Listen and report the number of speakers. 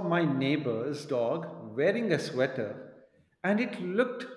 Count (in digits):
1